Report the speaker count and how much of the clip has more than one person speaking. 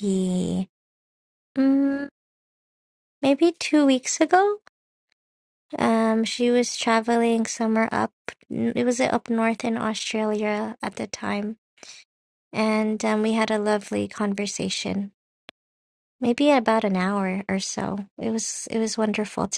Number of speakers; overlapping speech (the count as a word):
one, no overlap